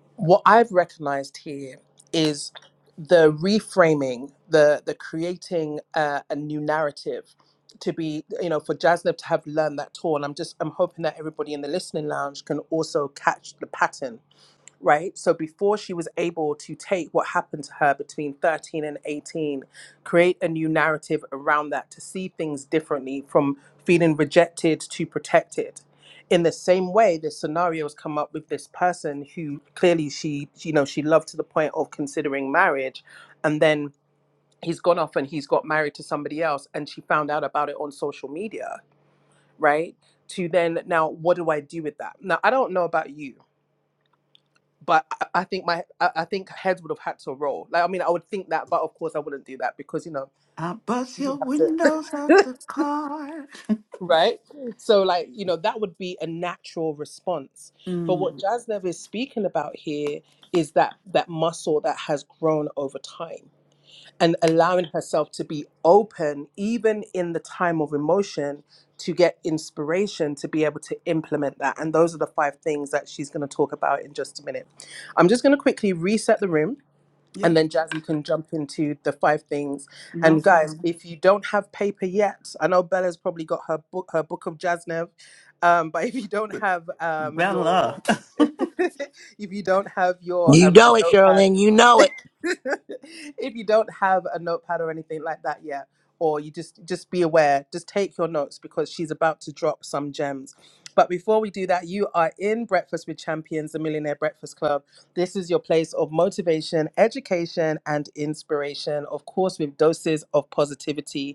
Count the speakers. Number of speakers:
3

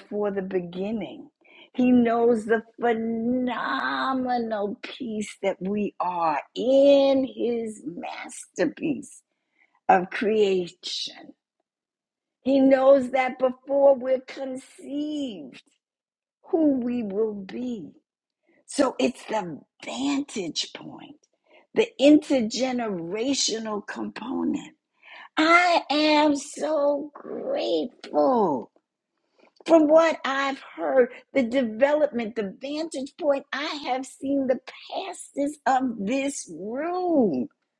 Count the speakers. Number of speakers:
1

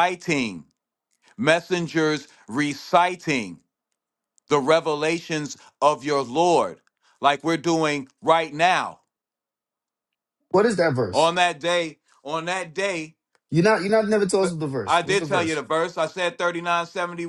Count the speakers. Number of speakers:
2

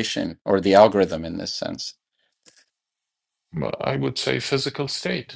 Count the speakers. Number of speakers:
2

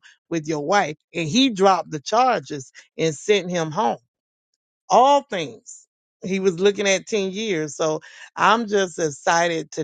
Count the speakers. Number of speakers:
1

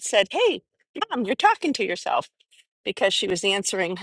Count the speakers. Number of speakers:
1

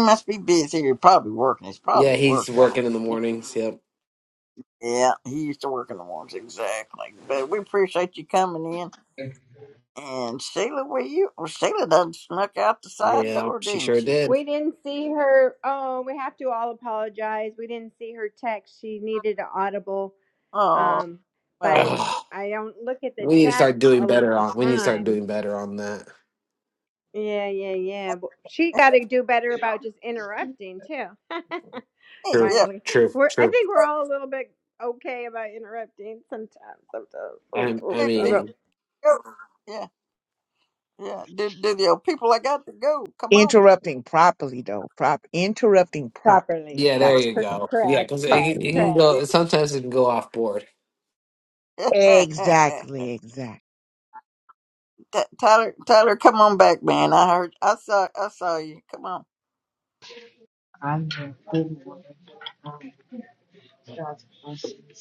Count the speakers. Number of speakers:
5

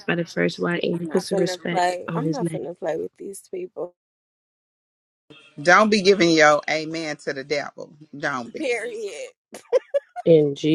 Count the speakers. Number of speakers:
3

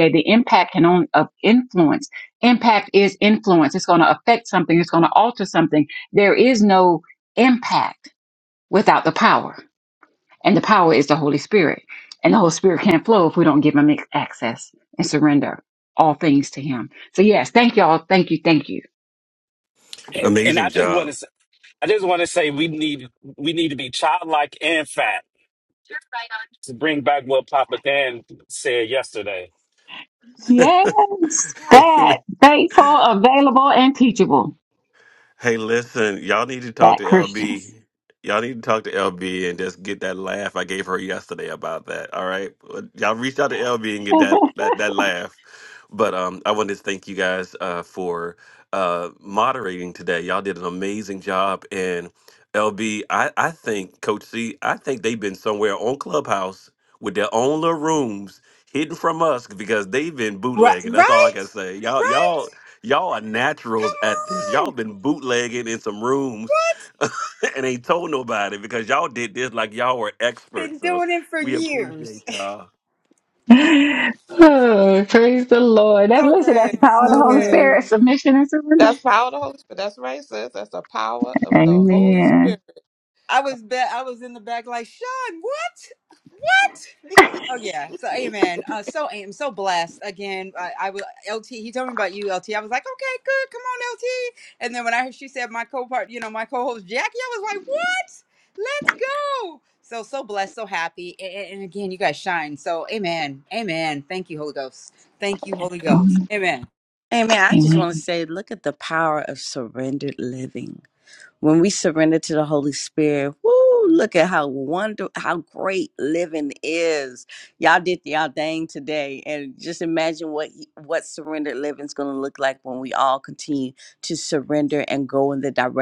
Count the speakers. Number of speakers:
6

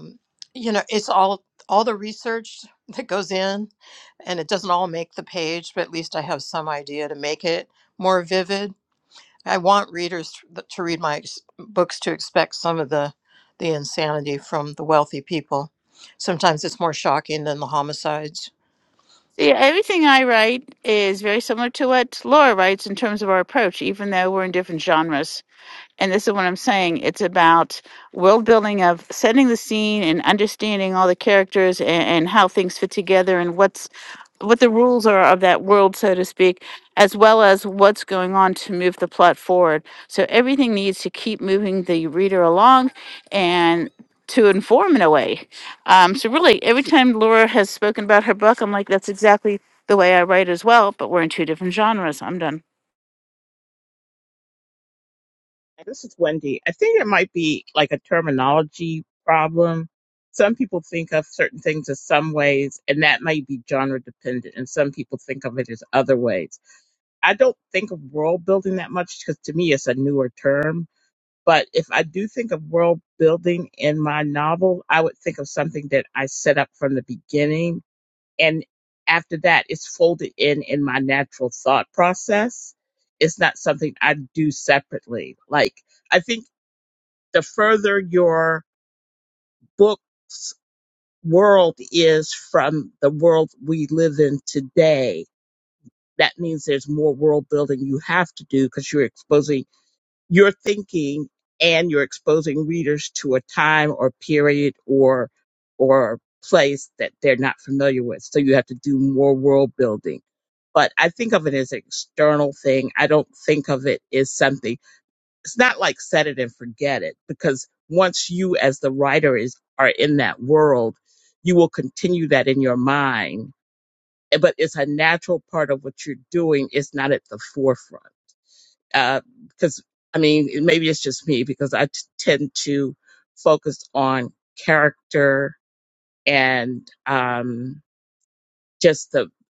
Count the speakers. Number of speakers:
3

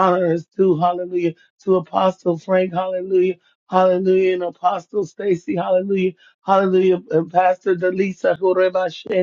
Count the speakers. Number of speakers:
1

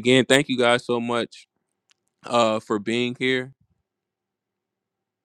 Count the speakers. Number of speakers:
1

